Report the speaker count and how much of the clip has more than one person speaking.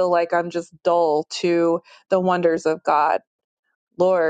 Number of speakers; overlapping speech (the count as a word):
one, no overlap